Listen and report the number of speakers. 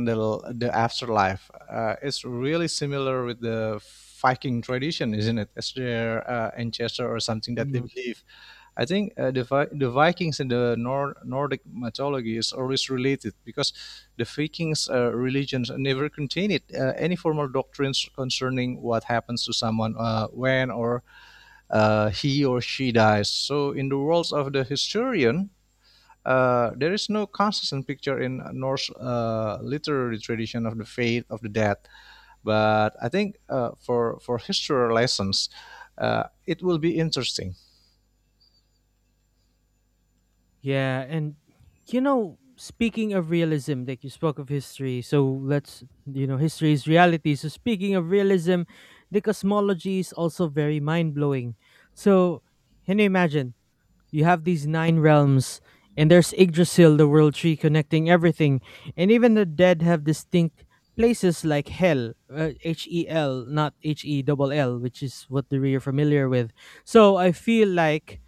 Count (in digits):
2